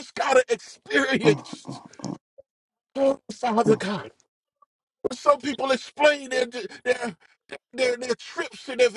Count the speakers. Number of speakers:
1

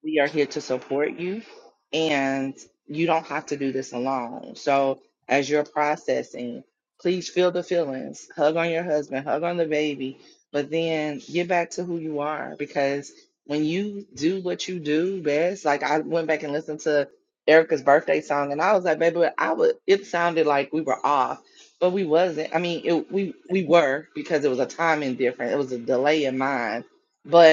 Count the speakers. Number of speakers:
1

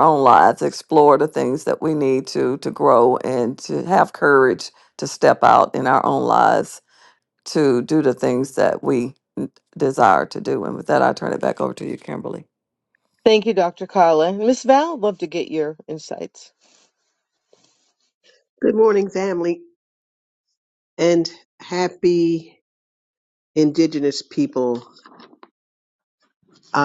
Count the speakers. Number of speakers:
3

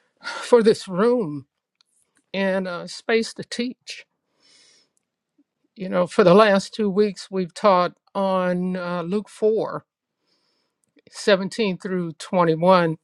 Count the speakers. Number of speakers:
1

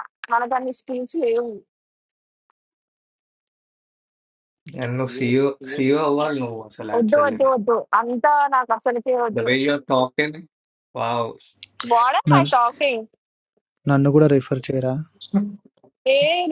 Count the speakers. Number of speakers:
3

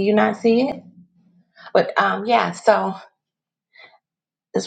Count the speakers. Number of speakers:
1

